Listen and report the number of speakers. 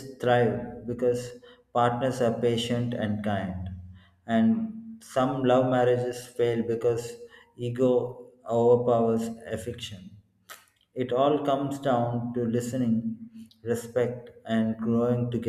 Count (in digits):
1